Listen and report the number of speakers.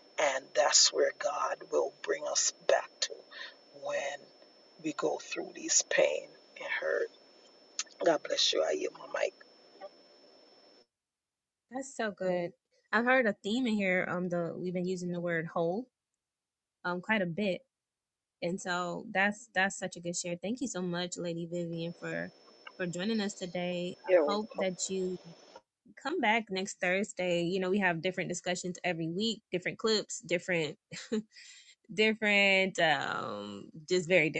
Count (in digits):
2